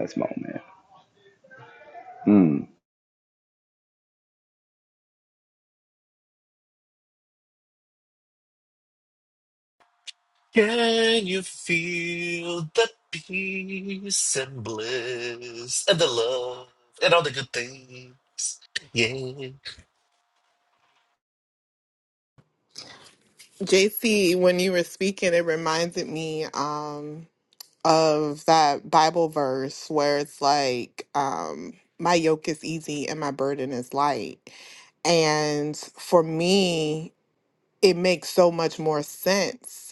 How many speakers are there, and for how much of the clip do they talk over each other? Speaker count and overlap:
three, no overlap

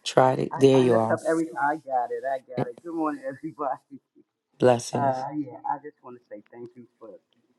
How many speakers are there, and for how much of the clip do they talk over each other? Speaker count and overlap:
two, about 11%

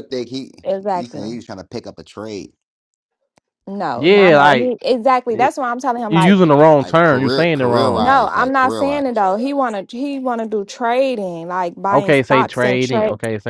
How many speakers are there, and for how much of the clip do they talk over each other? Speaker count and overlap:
three, about 37%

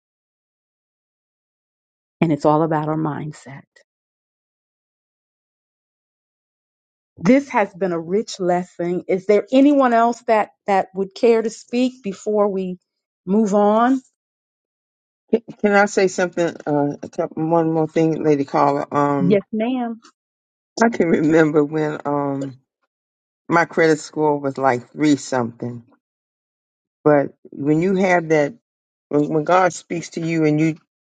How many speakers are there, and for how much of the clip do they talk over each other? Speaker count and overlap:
two, about 1%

